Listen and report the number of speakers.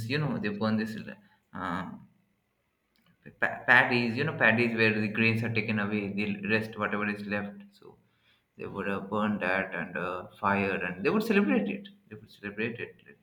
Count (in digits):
1